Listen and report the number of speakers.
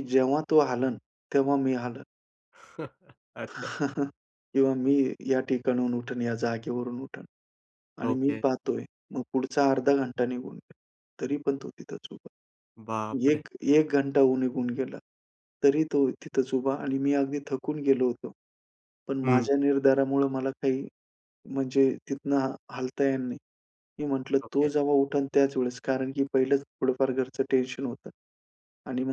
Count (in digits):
2